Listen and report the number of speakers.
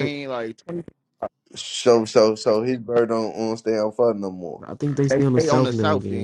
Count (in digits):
3